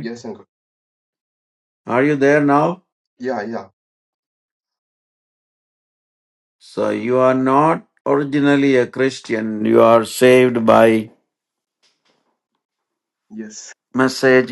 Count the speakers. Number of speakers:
2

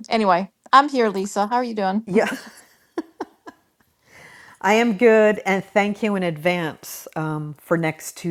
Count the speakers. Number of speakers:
2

